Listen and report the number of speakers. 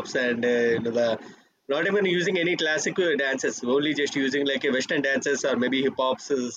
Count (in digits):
1